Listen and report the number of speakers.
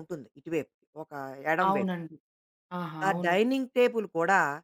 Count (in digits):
2